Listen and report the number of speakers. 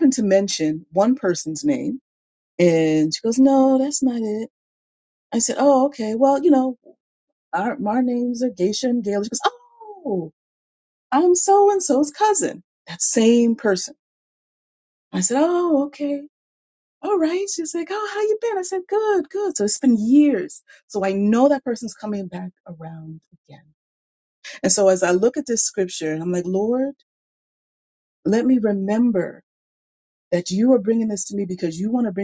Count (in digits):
1